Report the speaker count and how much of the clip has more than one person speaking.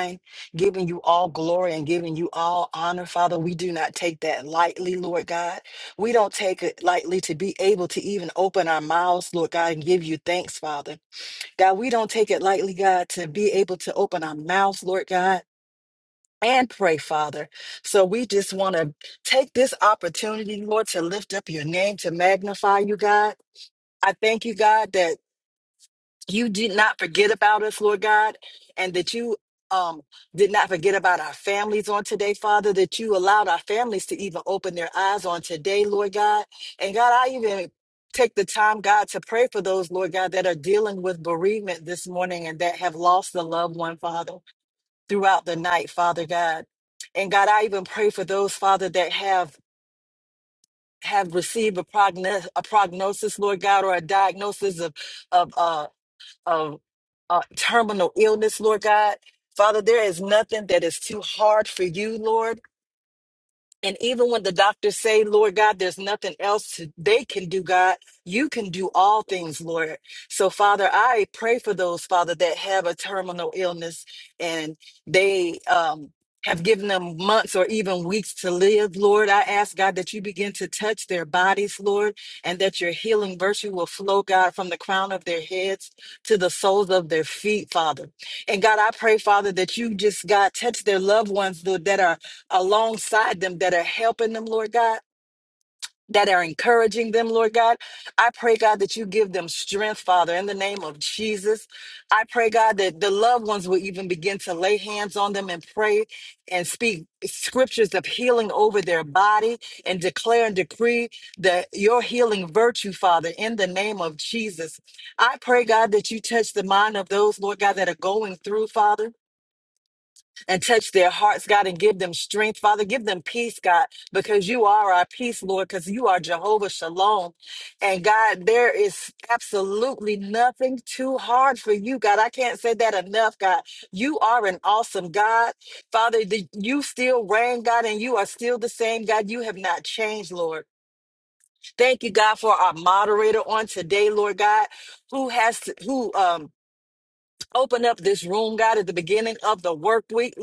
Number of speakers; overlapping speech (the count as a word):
one, no overlap